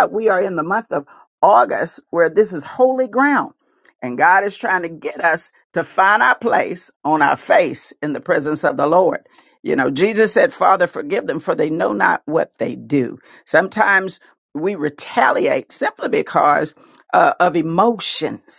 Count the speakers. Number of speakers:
1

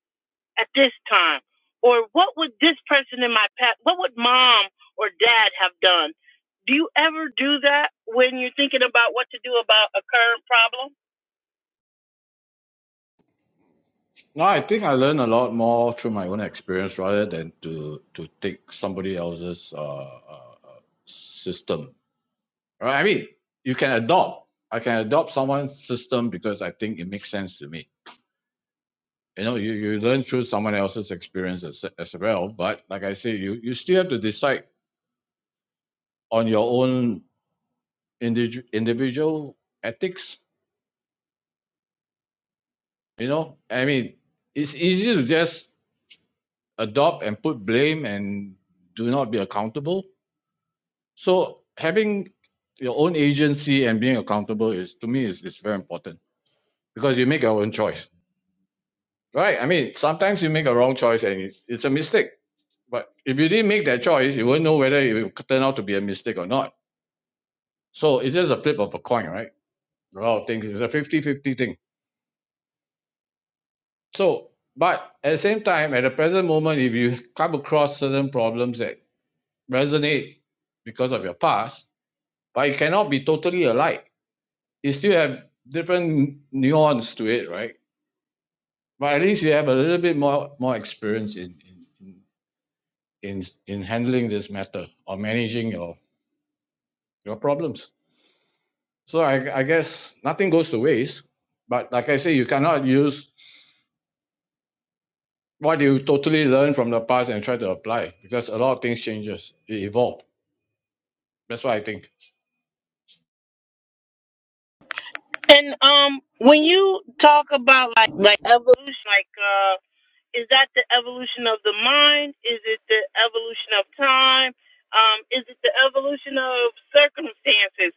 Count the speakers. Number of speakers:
2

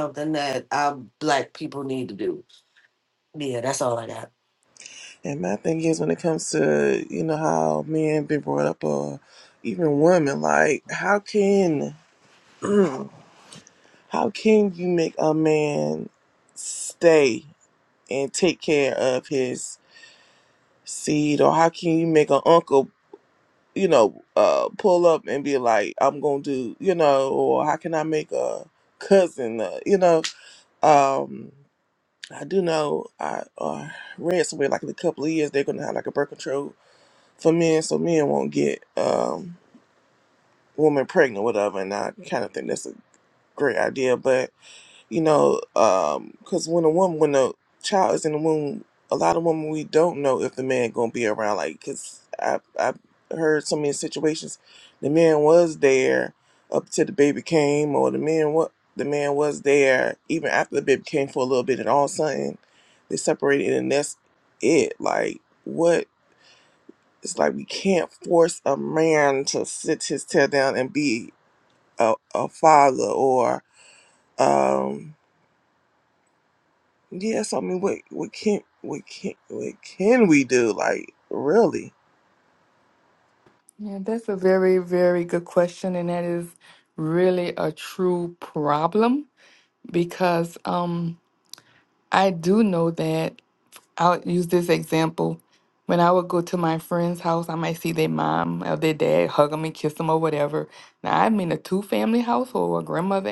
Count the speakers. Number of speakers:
3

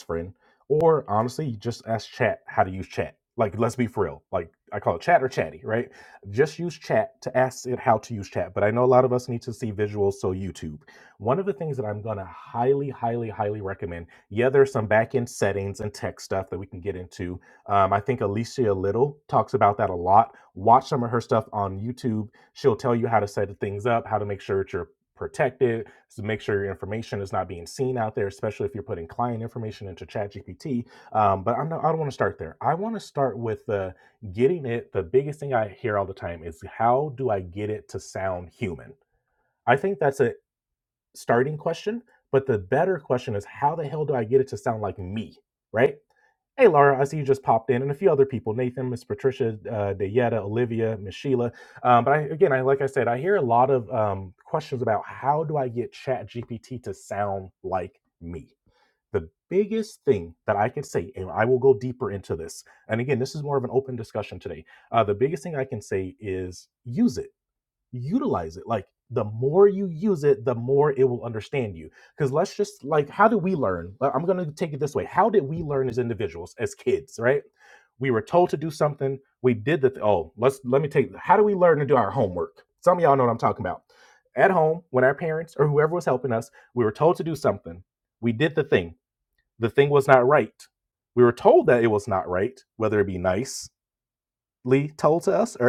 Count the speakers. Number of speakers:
1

